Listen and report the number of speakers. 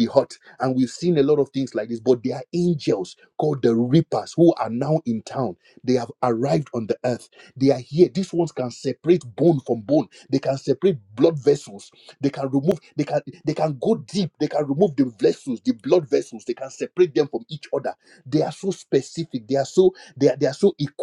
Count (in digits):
1